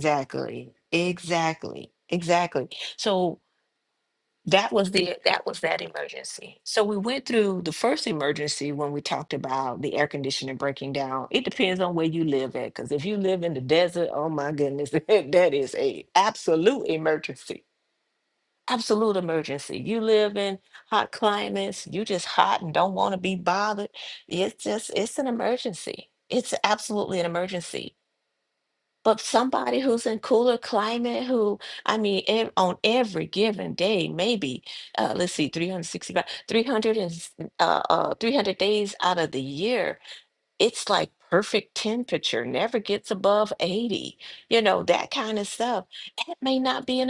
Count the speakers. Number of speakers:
one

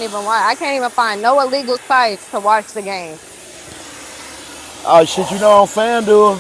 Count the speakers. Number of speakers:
two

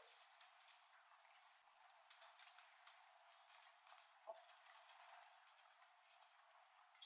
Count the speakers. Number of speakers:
zero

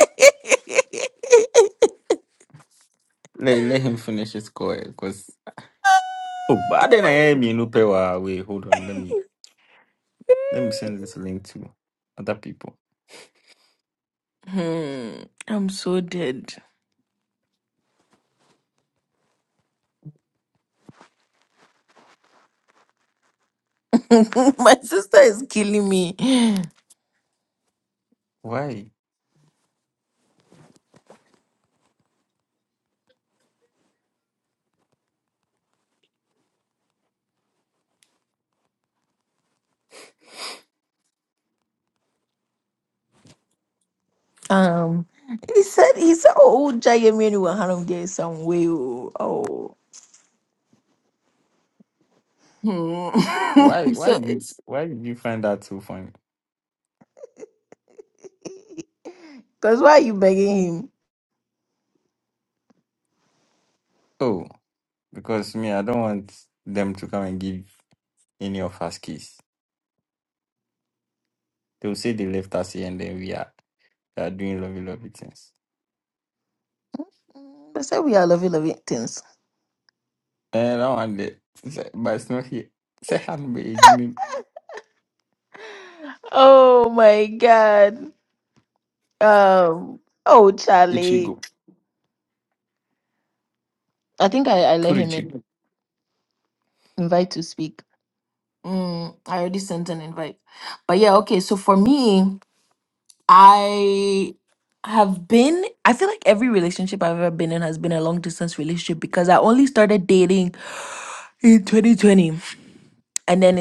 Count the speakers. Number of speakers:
two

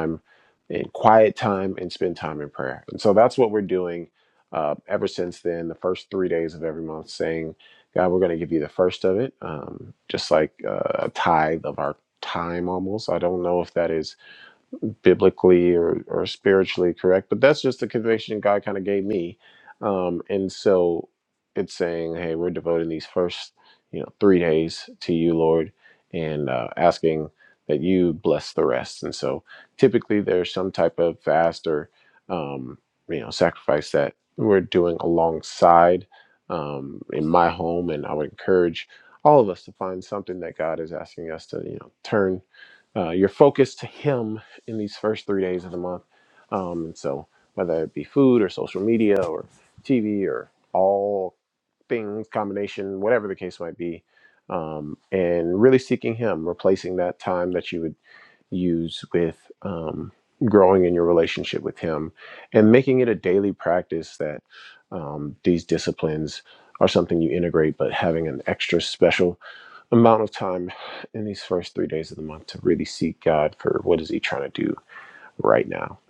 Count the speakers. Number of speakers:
one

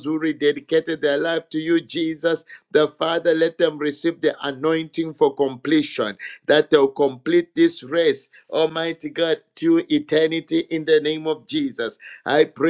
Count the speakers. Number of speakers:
one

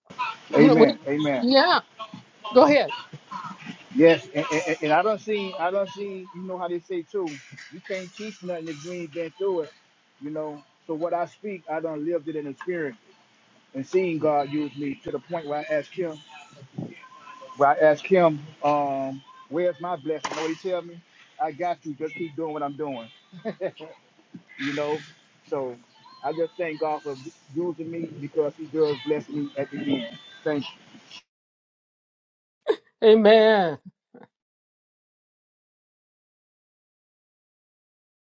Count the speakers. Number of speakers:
two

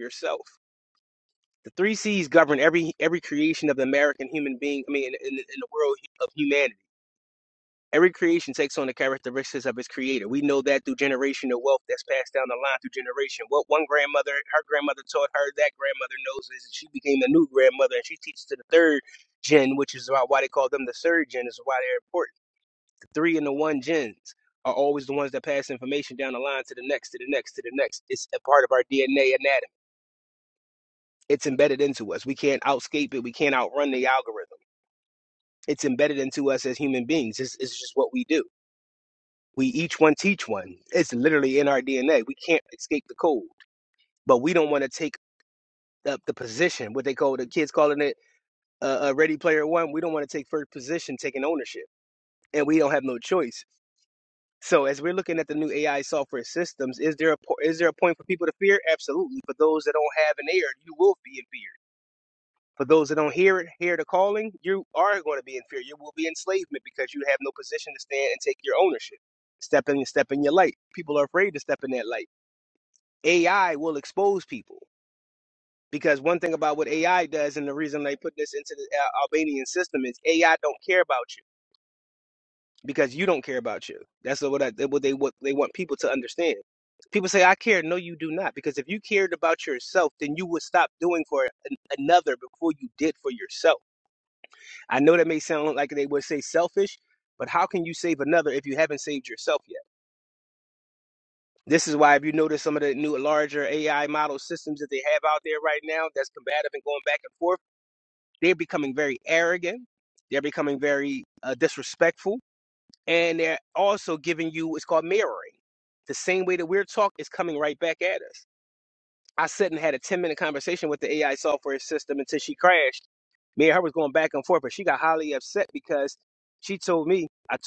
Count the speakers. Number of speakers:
one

